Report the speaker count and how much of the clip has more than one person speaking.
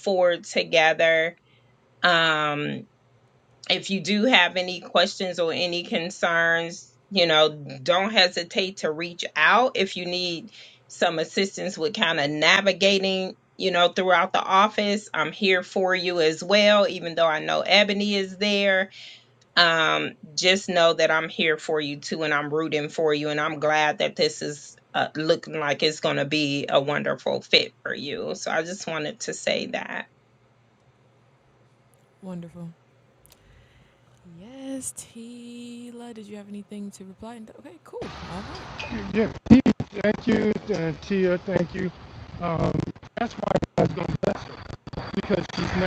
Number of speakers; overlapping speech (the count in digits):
3, no overlap